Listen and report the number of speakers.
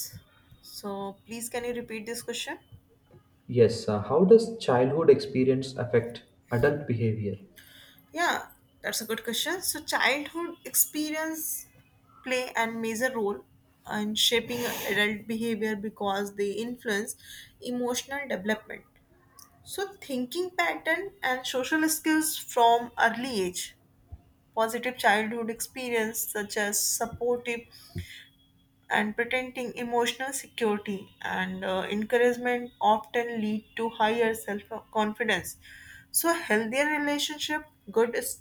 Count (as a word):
two